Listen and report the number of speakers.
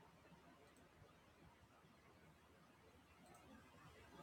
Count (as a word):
zero